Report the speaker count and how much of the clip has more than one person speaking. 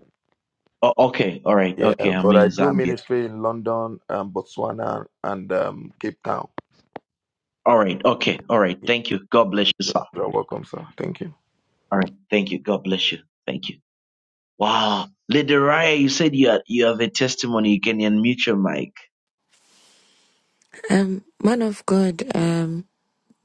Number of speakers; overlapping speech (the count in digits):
3, about 5%